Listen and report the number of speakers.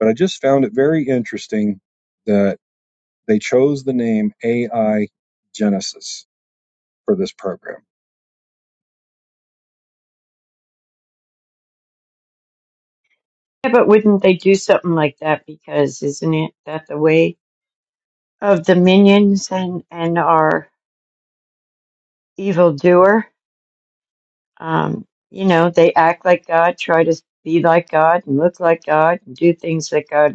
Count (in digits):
2